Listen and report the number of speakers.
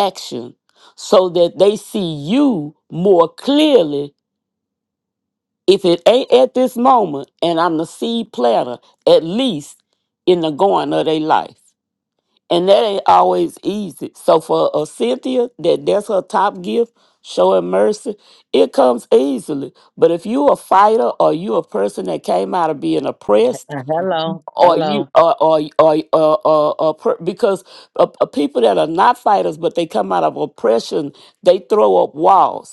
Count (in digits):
2